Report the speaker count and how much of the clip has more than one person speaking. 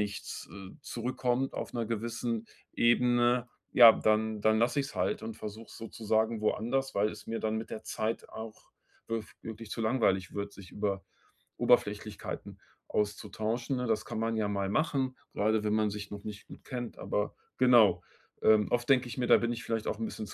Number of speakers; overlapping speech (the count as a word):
one, no overlap